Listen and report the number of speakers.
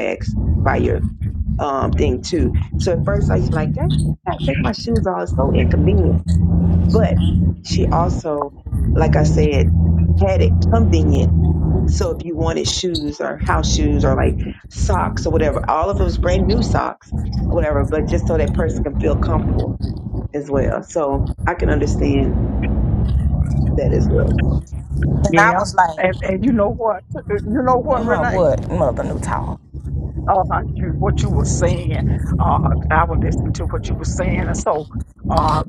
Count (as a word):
three